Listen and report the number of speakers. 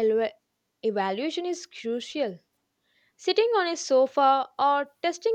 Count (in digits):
1